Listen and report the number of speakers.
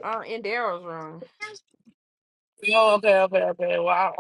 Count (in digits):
2